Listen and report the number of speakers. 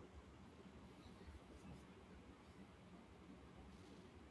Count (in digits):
0